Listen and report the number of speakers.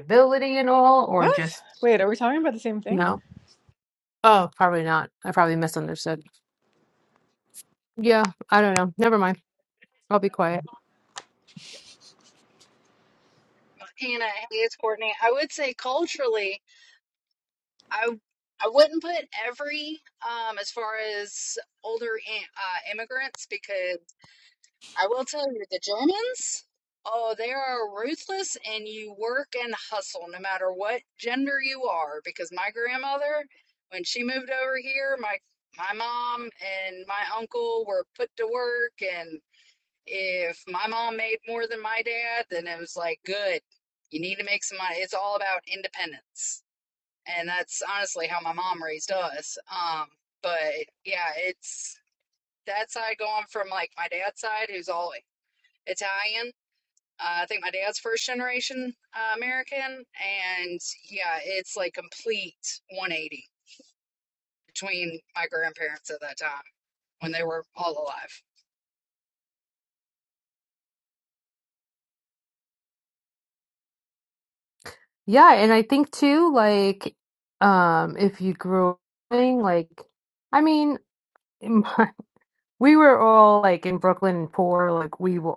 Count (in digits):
3